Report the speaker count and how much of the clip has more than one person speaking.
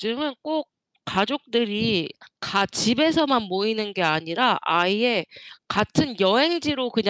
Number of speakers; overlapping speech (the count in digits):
1, no overlap